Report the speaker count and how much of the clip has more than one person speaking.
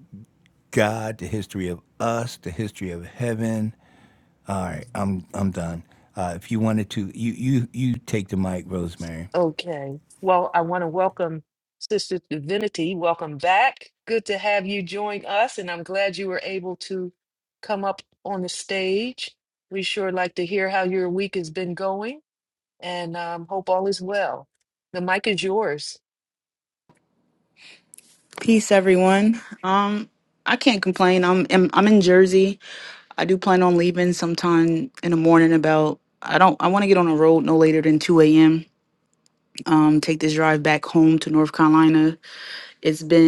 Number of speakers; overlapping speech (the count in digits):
3, no overlap